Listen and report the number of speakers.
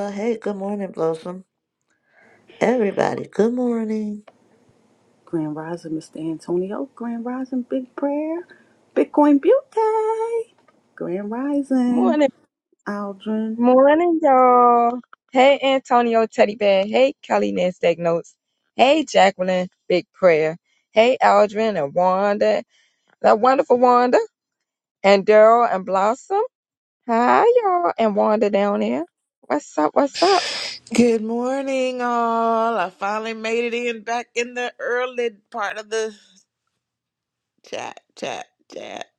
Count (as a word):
four